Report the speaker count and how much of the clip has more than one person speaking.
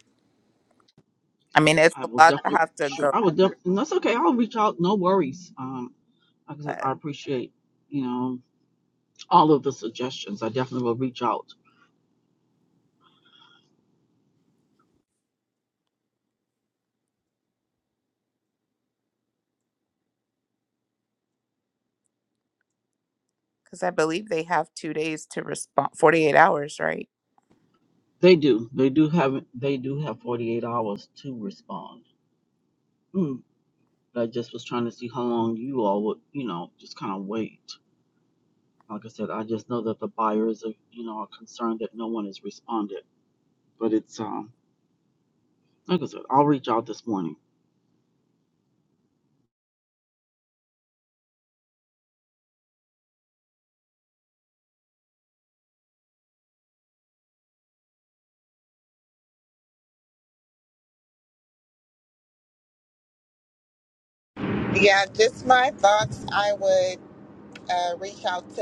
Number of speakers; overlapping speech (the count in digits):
3, about 2%